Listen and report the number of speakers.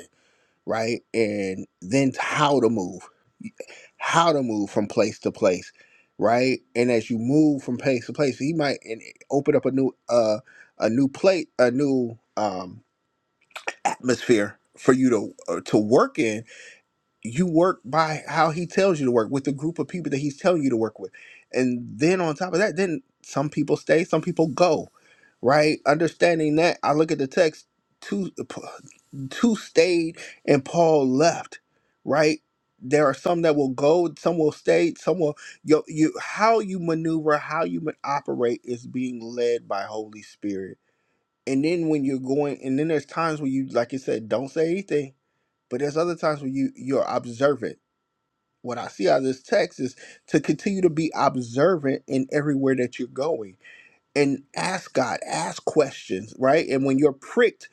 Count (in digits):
1